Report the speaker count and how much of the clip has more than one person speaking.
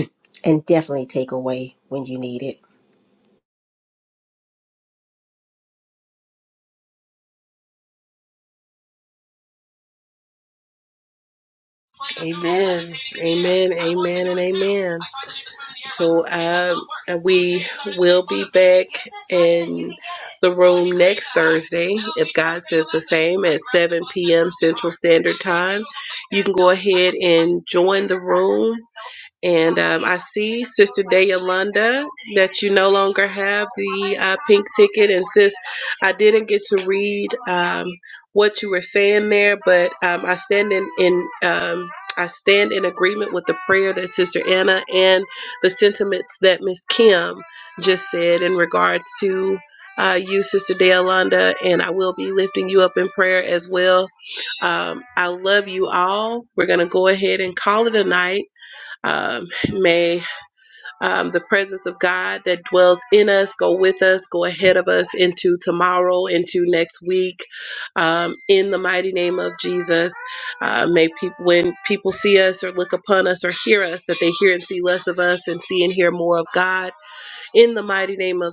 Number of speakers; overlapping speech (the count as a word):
two, no overlap